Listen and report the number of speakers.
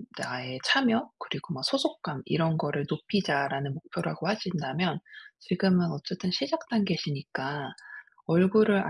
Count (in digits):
1